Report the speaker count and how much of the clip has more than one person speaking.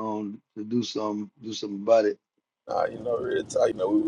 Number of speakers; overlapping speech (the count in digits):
2, no overlap